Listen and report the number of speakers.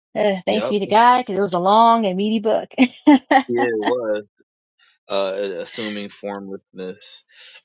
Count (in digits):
2